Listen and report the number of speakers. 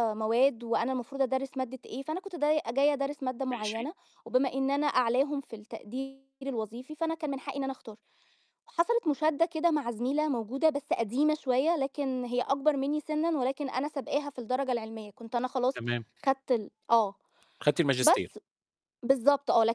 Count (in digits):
2